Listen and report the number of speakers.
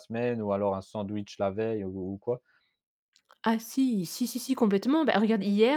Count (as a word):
two